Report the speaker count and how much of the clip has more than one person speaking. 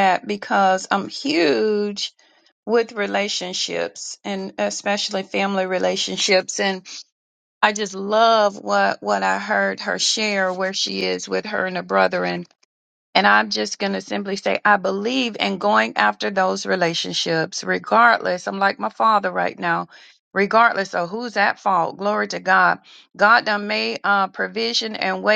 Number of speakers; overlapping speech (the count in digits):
1, no overlap